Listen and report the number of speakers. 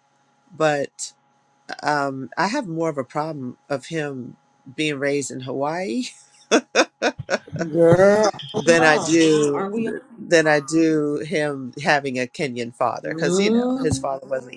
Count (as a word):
two